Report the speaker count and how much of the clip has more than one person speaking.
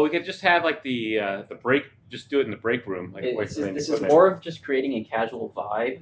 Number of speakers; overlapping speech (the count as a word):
two, about 19%